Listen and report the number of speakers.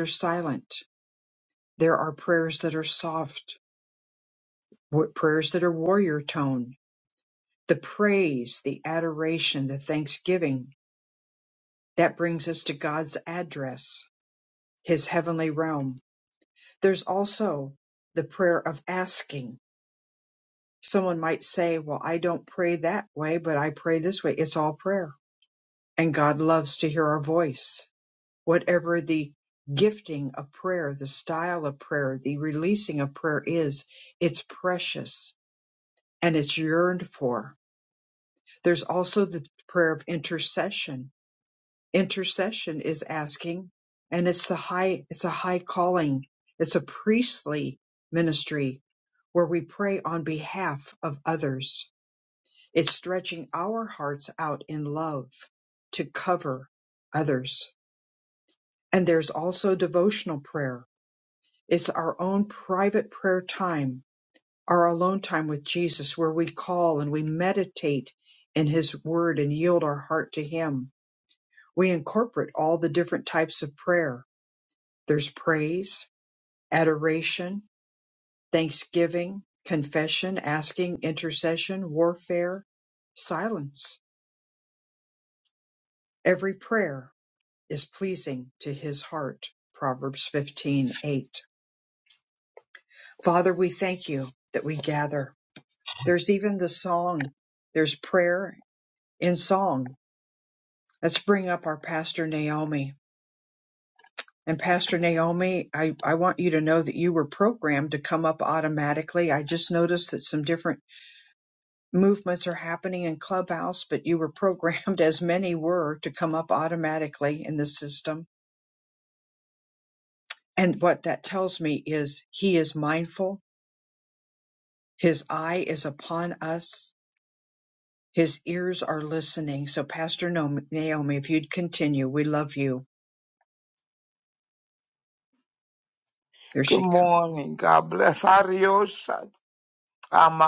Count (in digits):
2